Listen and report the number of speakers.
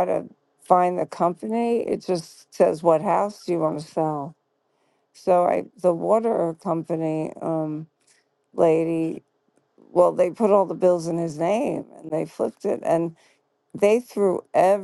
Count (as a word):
one